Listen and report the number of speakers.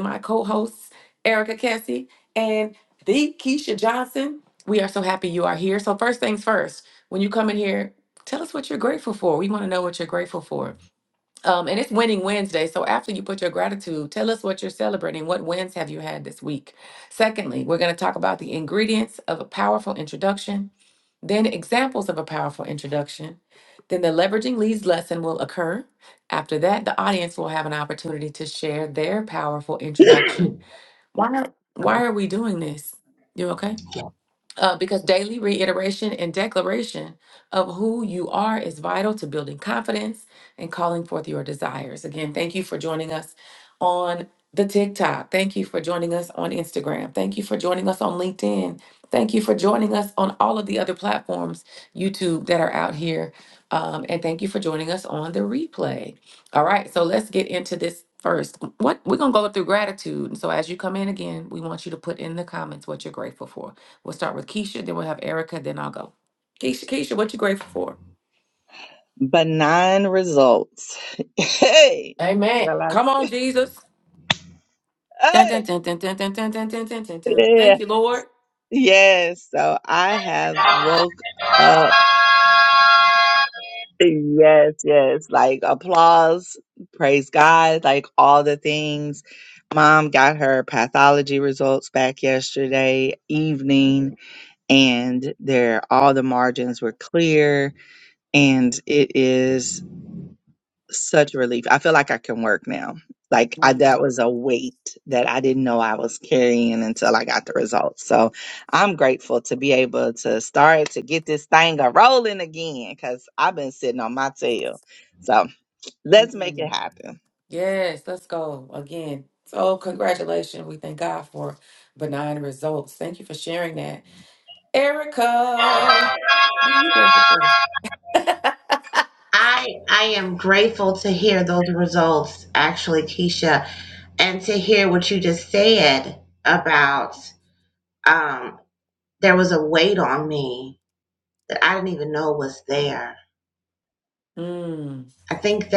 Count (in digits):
3